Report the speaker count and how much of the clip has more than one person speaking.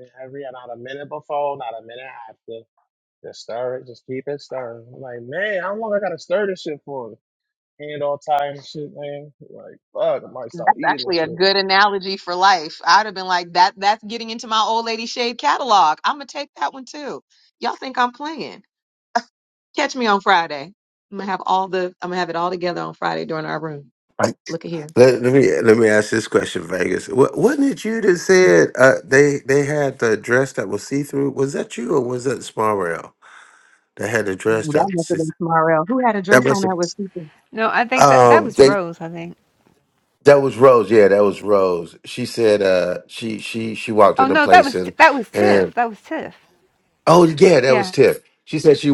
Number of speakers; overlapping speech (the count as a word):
four, about 8%